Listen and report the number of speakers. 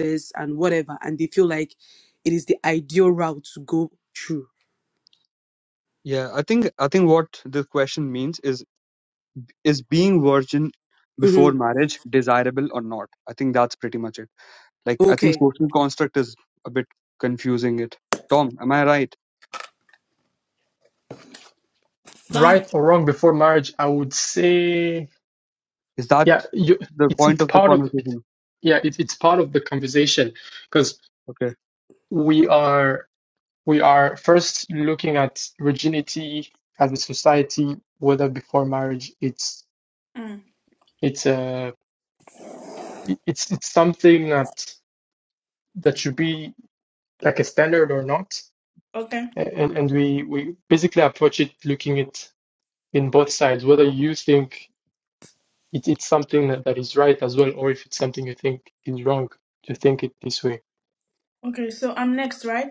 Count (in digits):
4